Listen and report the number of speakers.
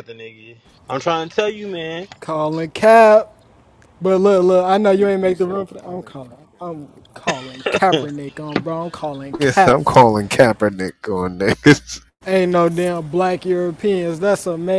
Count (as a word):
three